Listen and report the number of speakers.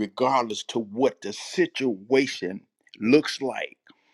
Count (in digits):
1